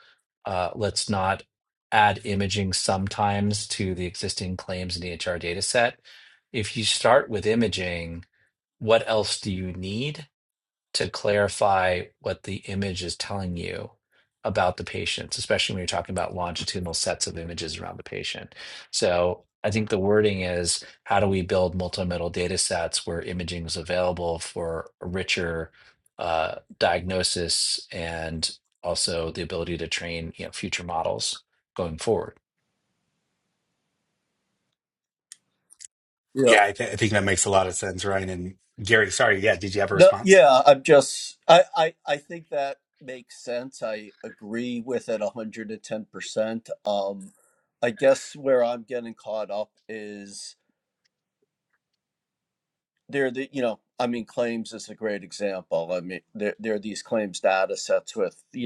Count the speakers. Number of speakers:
three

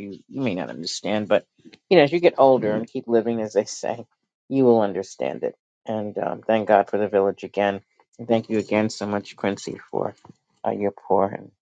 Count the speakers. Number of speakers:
one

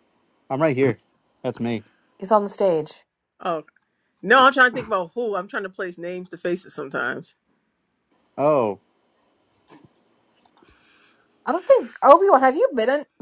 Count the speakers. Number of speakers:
three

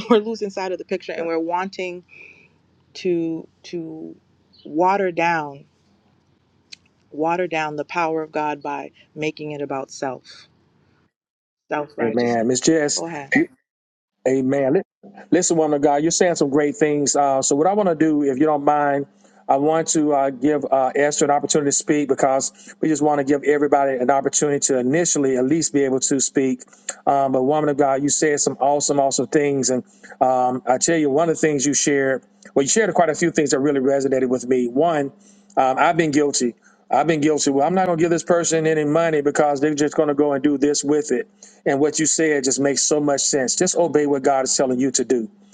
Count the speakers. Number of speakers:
two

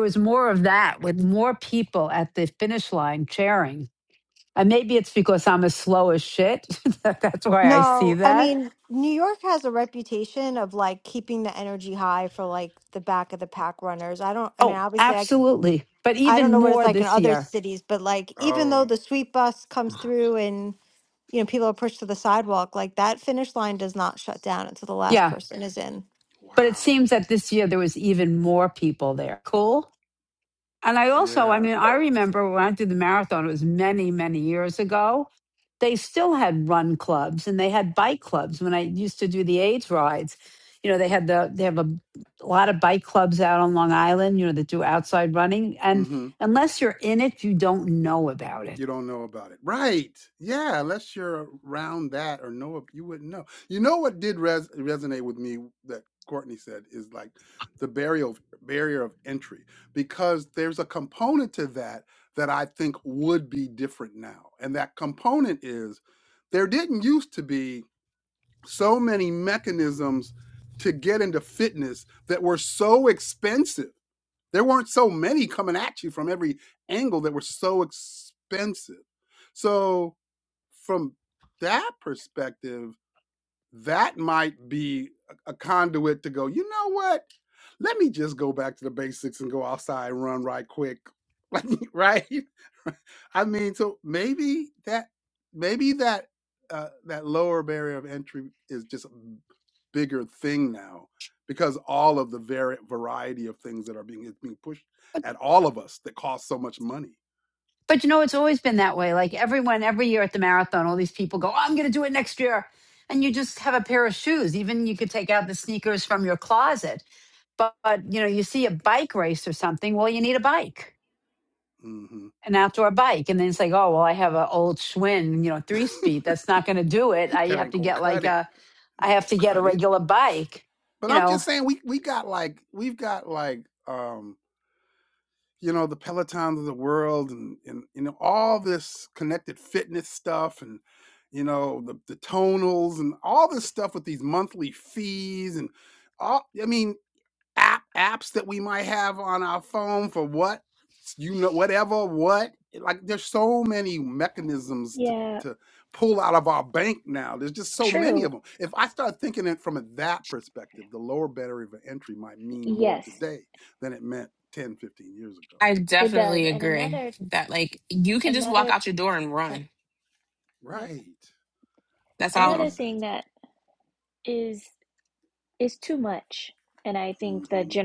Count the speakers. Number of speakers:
five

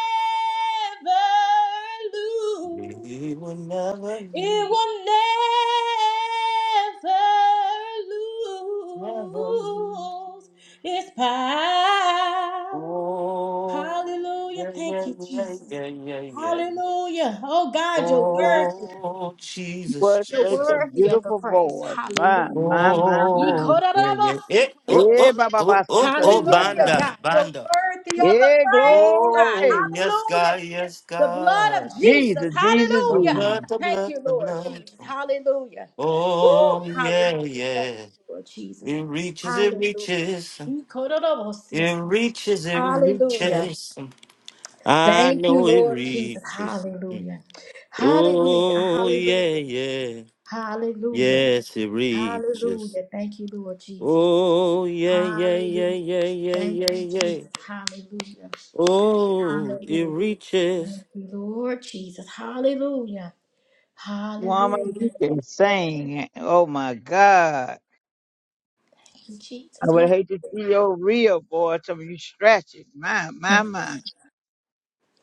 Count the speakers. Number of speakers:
three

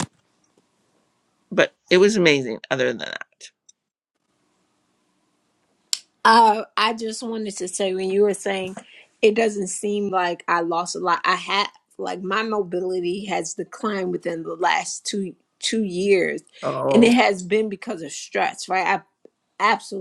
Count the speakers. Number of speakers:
two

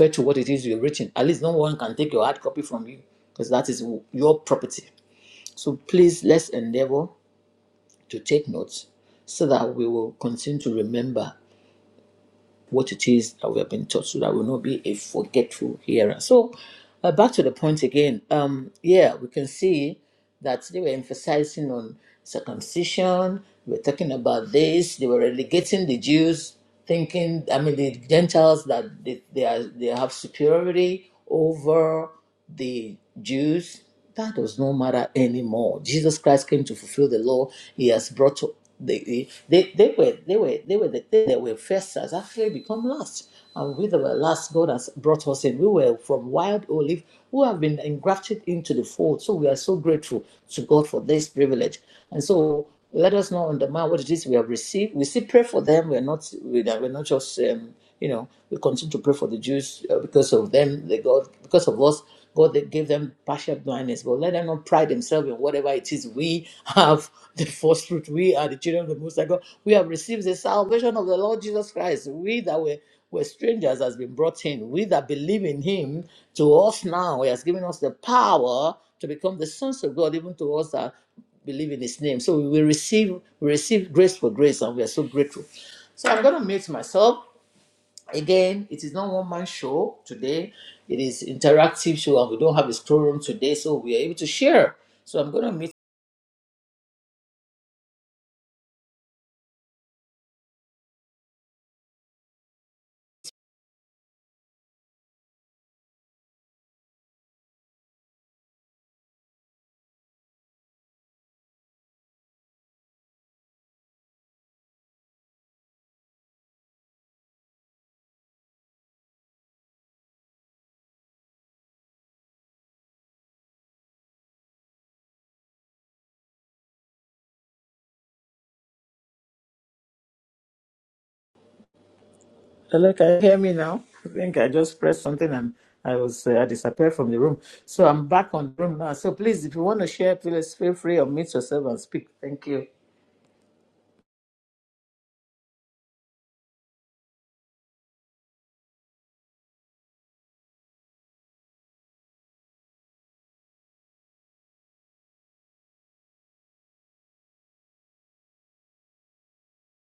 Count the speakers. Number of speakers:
one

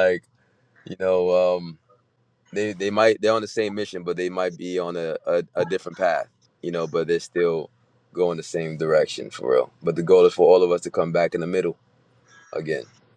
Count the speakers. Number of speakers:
one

